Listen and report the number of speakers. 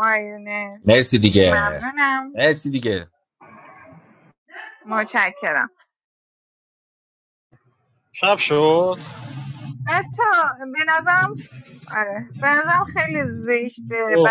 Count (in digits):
3